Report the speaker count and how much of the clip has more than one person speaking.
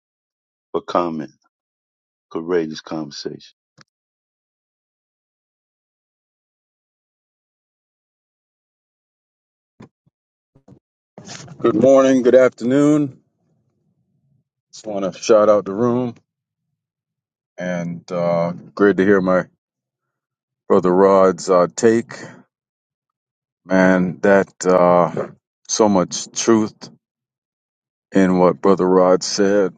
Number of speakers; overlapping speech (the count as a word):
two, no overlap